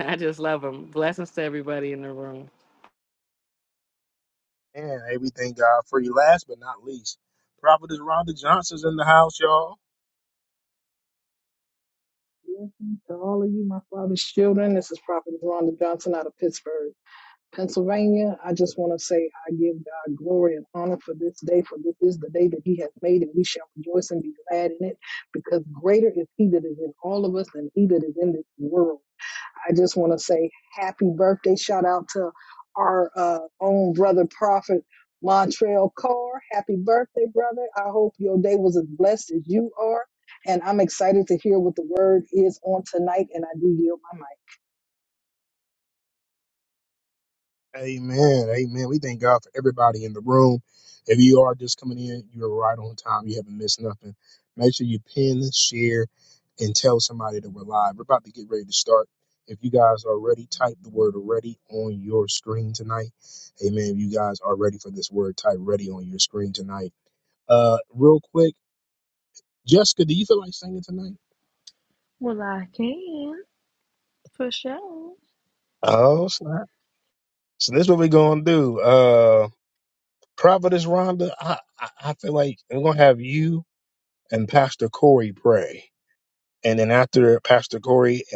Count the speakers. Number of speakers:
4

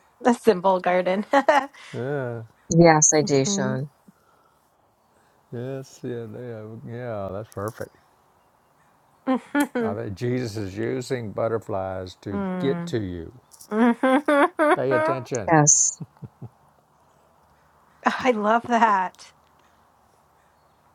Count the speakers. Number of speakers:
3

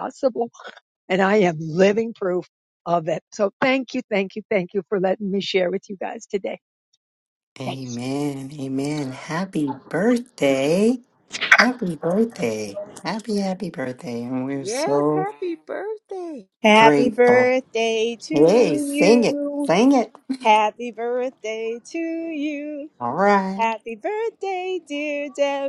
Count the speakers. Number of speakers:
4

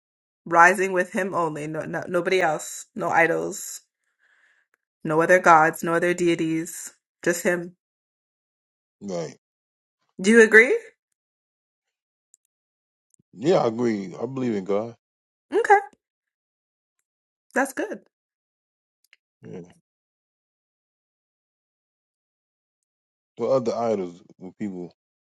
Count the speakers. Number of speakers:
2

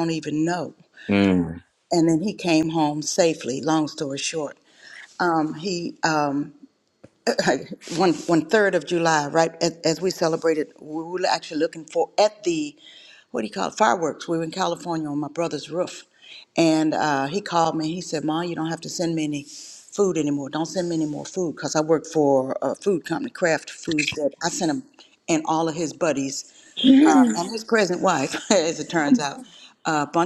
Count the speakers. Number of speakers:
2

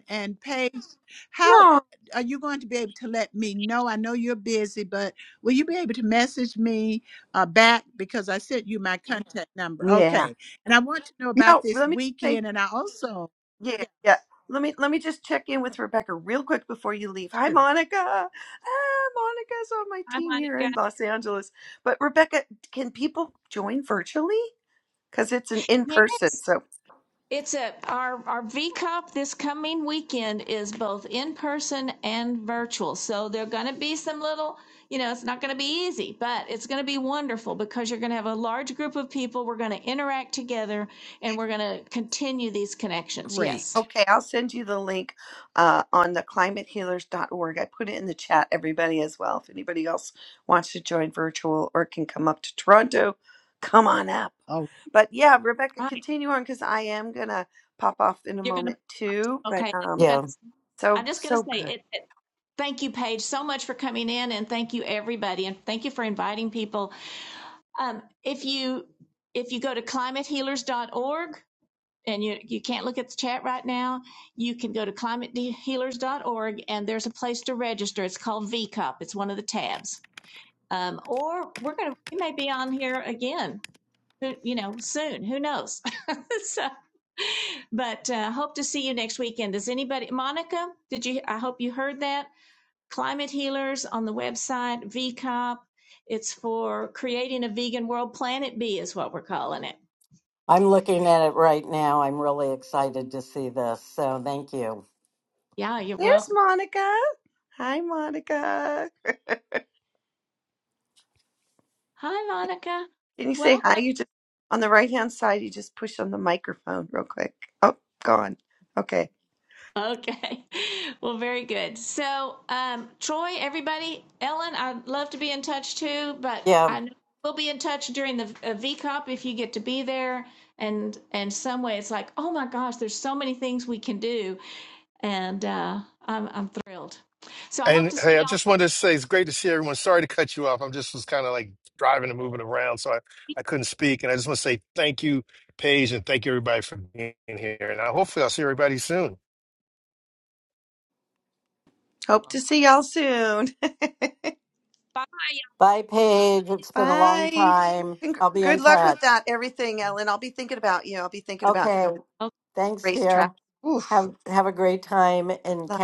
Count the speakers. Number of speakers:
5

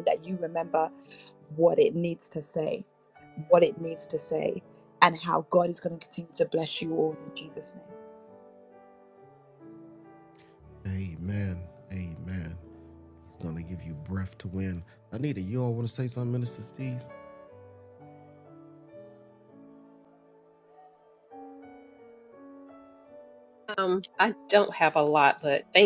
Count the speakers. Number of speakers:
3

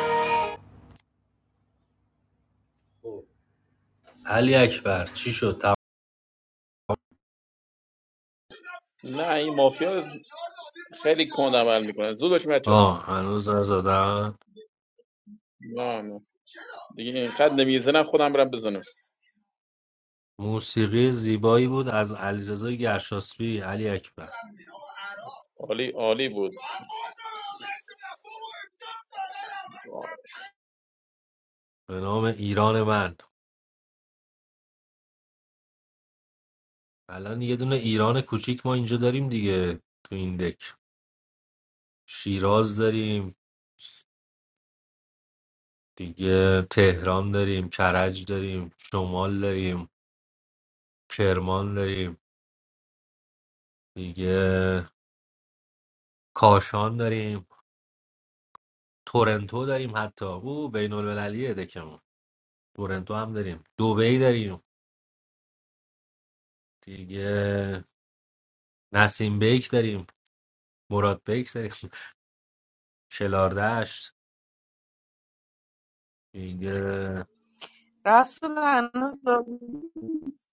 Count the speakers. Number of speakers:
3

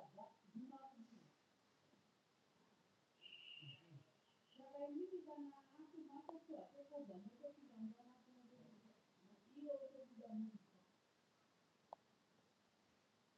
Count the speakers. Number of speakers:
0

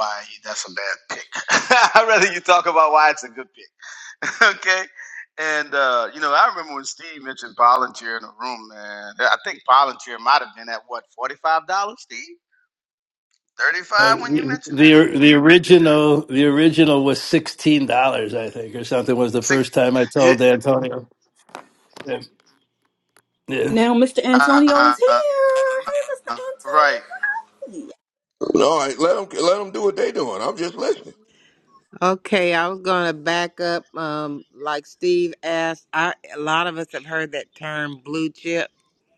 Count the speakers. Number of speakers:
5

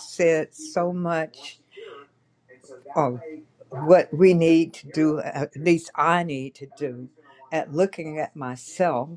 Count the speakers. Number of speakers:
1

